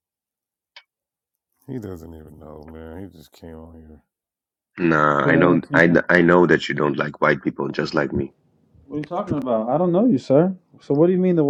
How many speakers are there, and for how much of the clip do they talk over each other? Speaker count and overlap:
three, about 6%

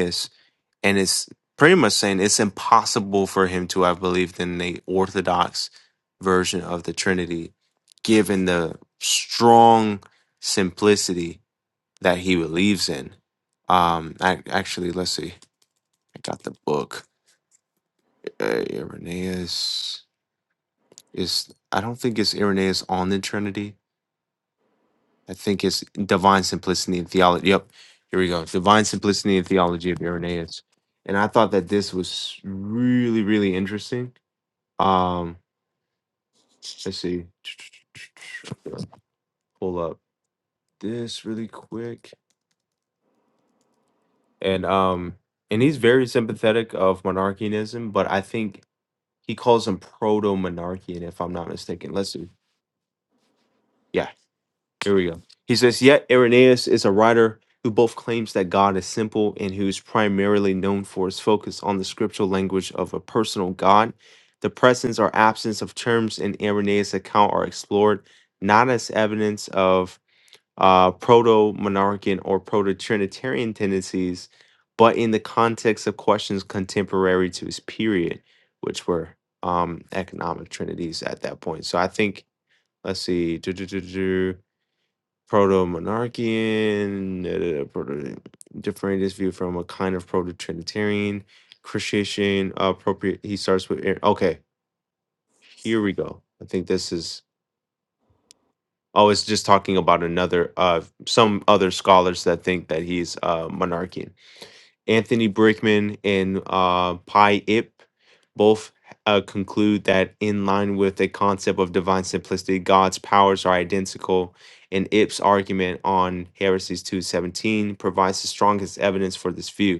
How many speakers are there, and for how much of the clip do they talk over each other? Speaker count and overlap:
one, no overlap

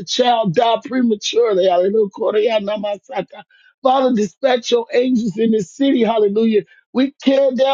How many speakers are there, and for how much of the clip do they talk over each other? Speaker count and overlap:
one, no overlap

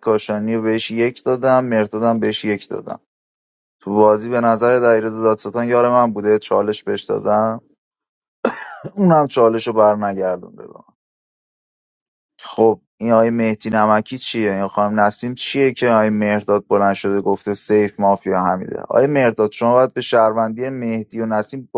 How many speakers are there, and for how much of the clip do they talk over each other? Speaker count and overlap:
one, no overlap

